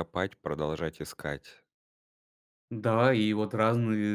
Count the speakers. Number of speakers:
2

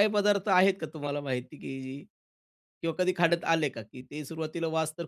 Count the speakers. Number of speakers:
1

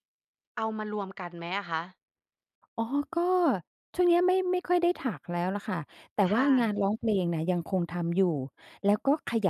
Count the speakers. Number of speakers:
2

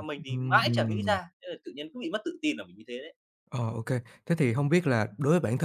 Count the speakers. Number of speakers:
2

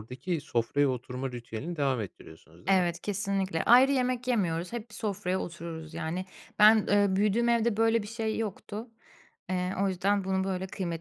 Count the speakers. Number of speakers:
2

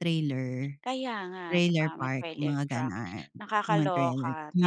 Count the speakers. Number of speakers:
2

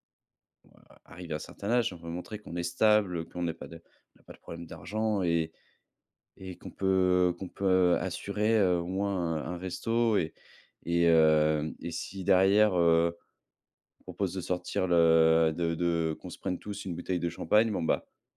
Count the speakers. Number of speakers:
1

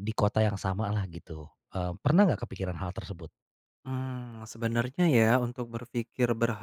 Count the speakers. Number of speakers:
2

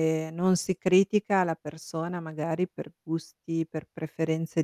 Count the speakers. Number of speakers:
1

